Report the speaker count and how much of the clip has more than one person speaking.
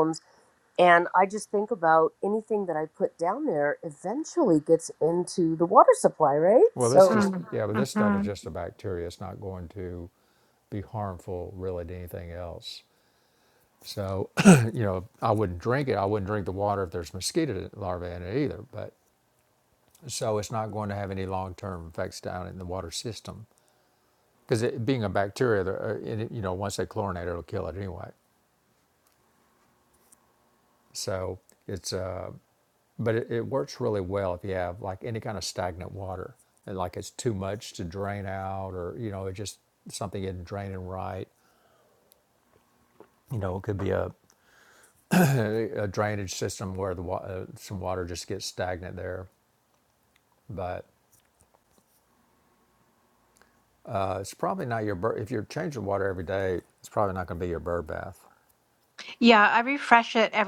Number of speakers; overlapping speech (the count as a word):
three, about 3%